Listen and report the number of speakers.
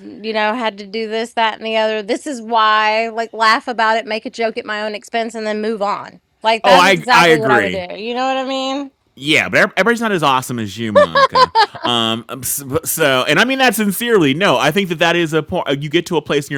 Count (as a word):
two